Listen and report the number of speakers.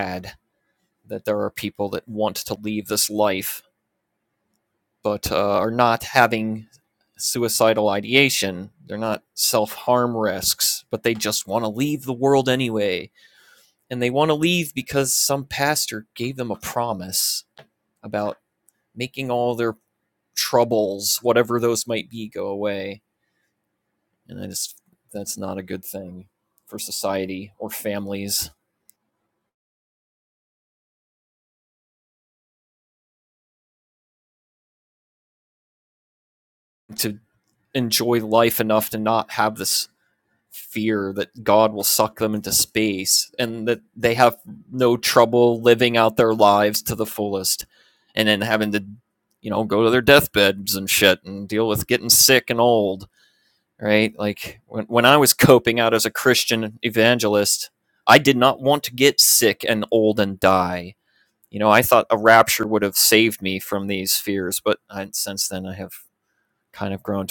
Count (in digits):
1